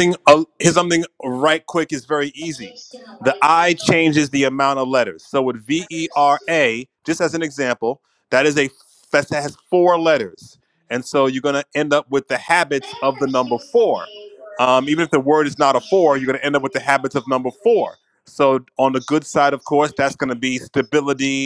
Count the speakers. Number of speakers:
1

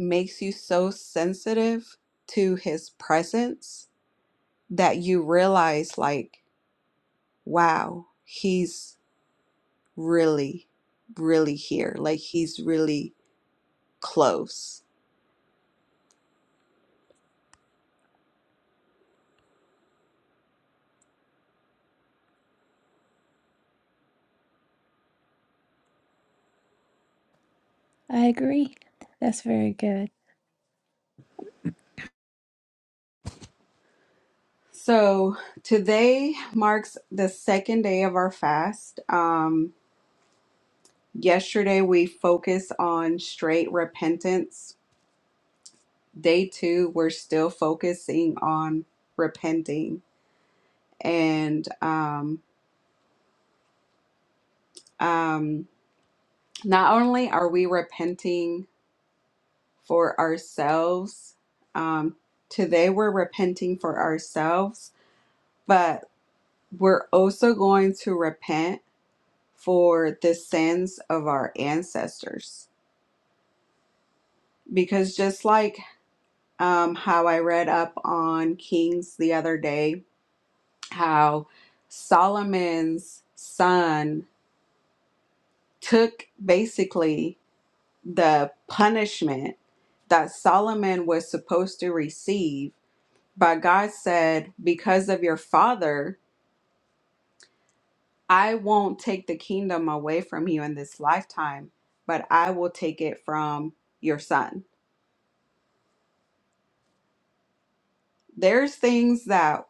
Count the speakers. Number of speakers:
2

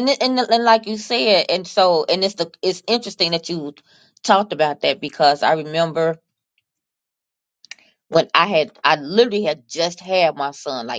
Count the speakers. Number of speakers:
1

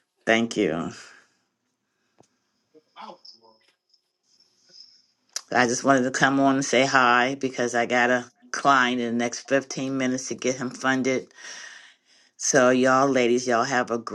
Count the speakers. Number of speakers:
1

